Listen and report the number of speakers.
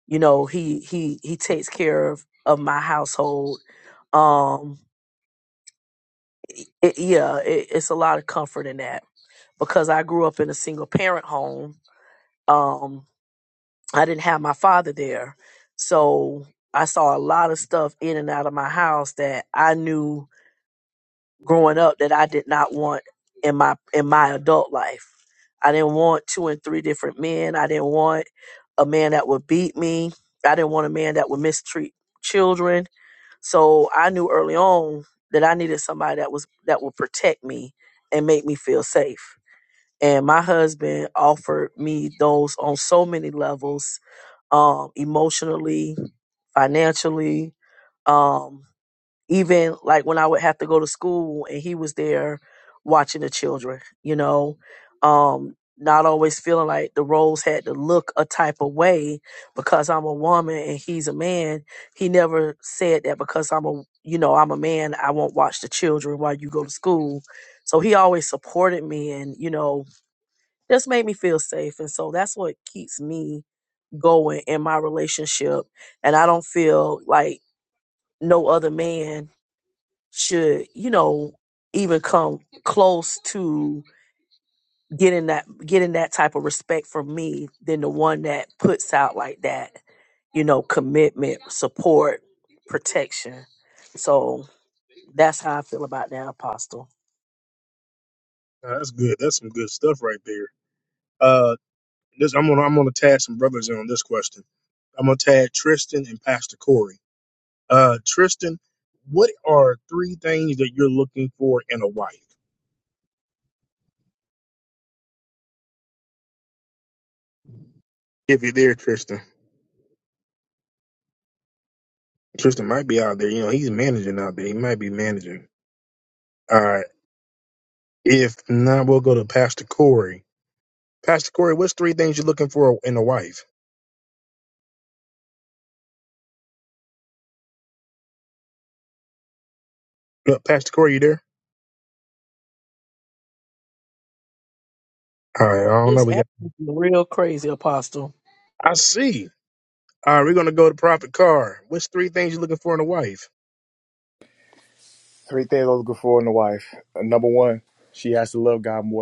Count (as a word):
three